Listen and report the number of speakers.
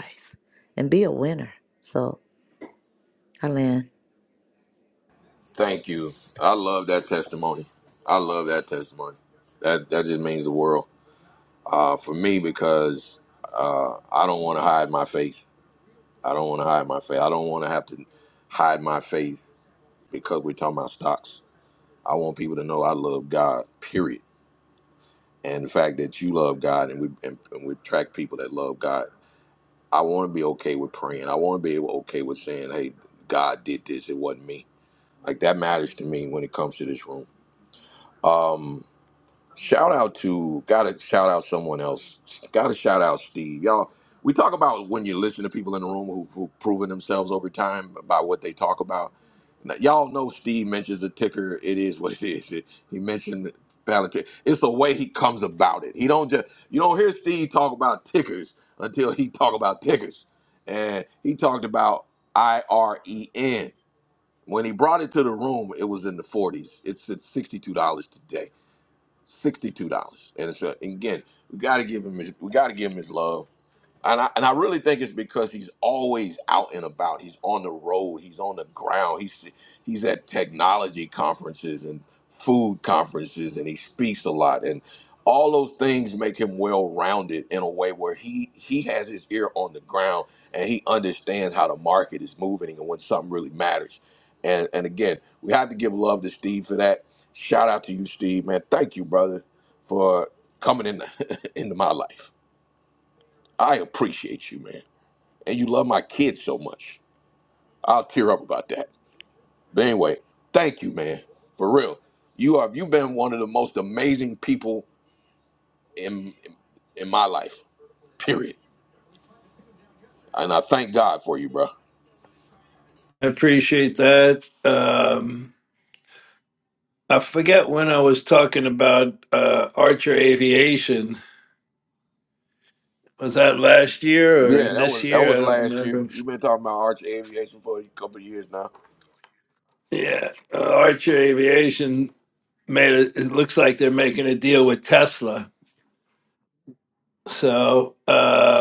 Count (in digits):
3